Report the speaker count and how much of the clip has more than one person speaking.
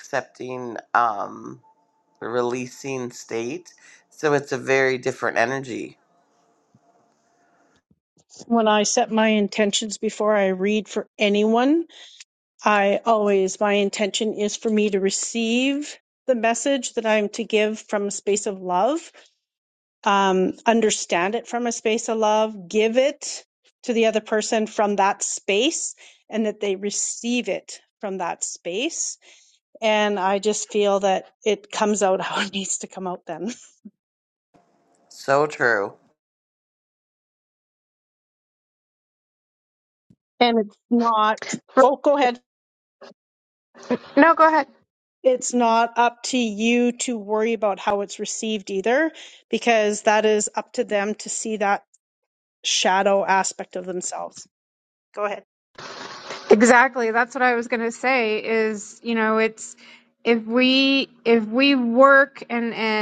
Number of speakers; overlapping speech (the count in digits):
3, no overlap